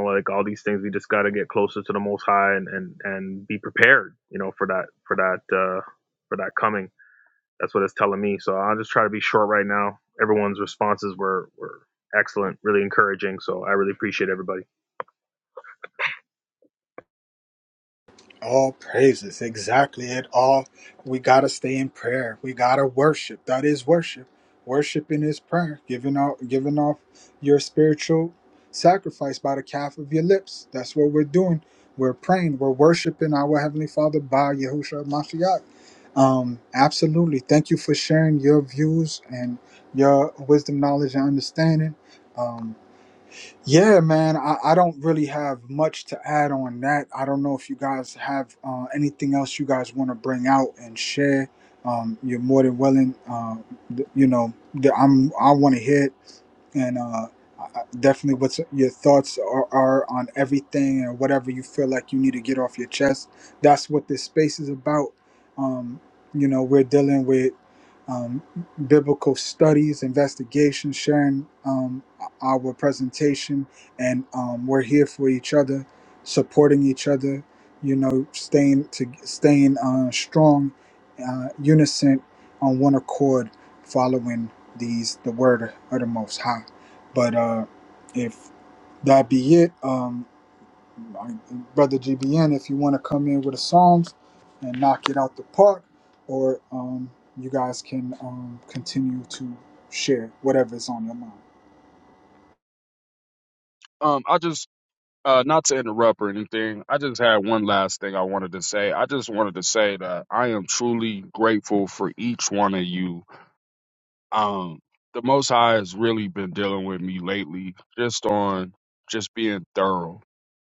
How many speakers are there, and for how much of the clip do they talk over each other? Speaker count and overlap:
3, no overlap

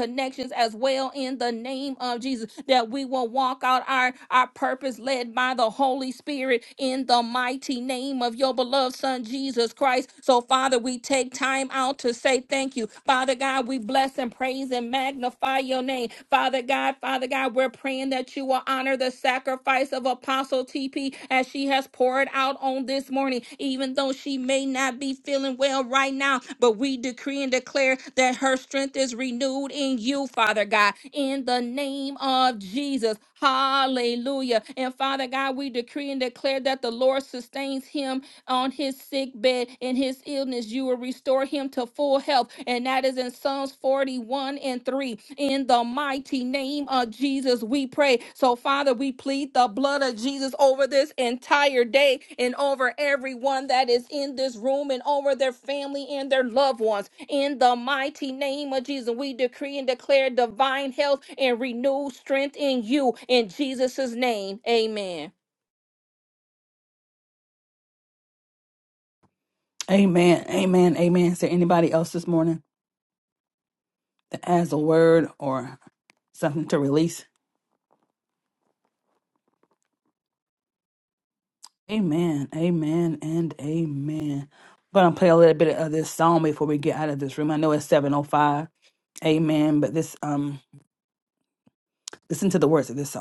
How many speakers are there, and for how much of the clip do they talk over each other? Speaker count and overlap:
2, no overlap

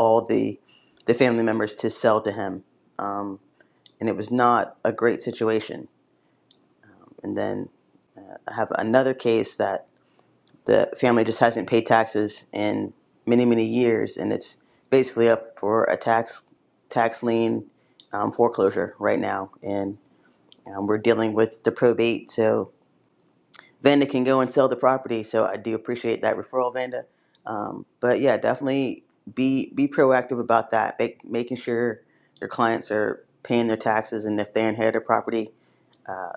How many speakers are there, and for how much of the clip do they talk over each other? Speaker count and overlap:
1, no overlap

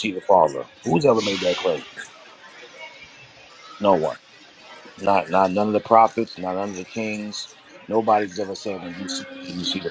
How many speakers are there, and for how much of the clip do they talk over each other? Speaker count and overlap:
1, no overlap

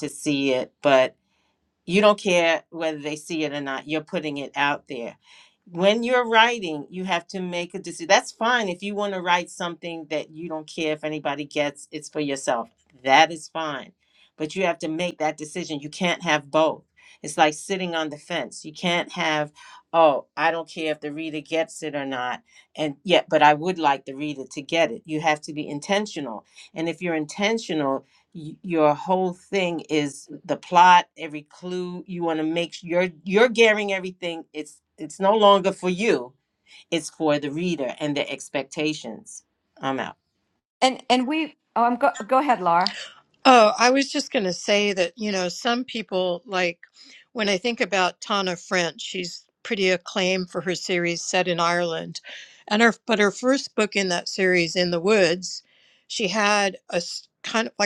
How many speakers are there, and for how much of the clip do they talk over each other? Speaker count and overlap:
3, no overlap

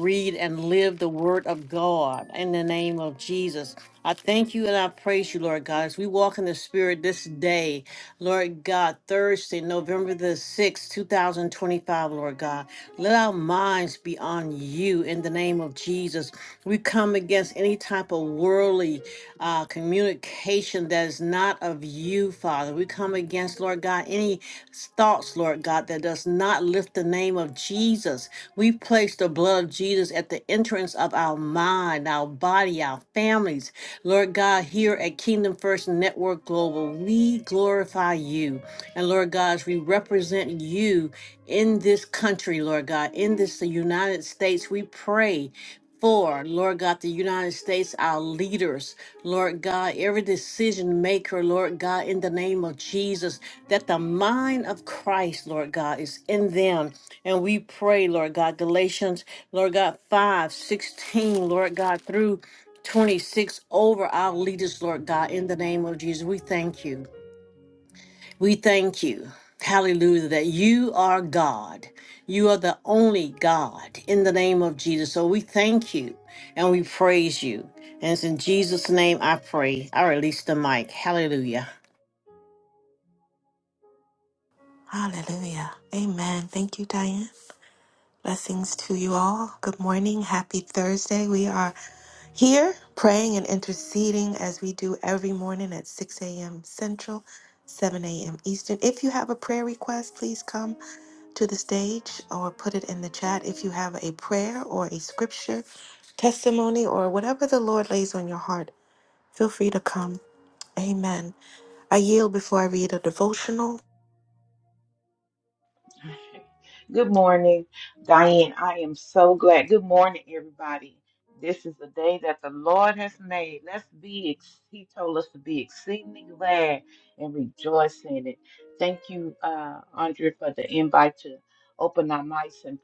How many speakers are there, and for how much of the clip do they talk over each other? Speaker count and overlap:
3, no overlap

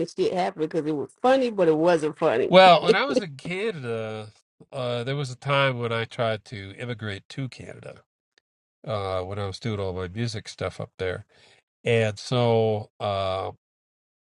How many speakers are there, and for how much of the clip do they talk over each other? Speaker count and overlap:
2, under 1%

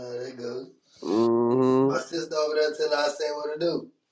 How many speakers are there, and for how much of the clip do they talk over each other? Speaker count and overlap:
2, about 4%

